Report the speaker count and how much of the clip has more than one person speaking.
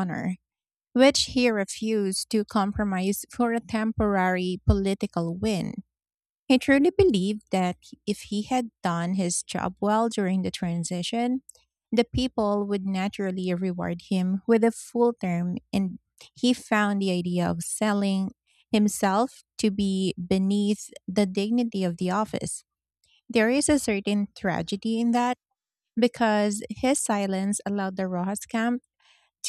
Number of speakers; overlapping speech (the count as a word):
one, no overlap